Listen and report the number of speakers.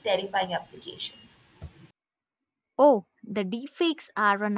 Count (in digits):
2